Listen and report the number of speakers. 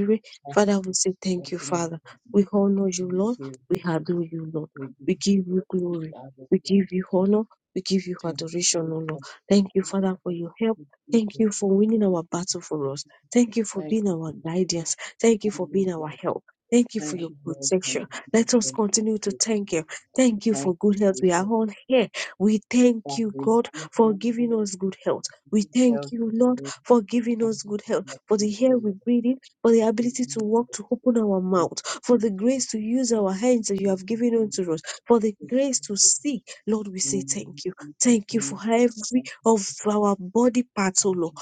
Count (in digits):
1